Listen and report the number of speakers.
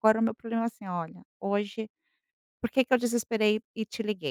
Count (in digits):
1